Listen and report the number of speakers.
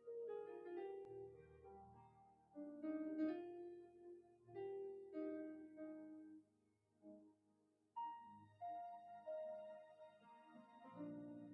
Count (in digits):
0